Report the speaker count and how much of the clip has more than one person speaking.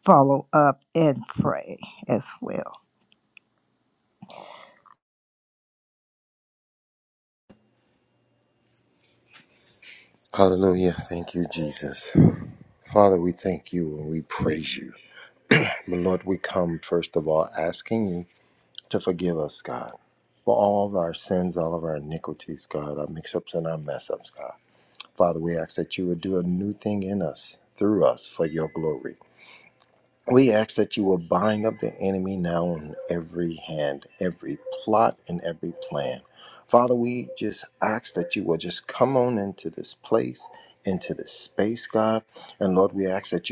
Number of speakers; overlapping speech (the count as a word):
two, no overlap